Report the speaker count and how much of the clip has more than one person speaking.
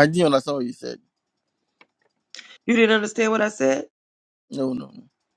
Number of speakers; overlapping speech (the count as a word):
two, no overlap